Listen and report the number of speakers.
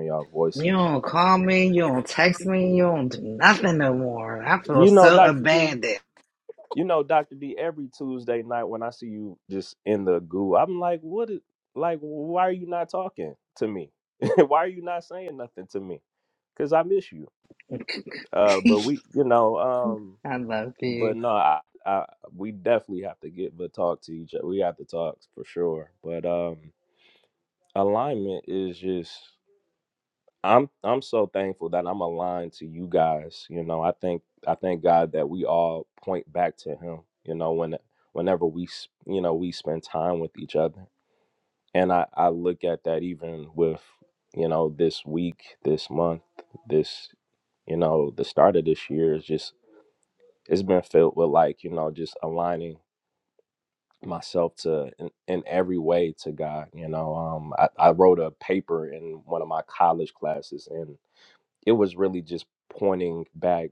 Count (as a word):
two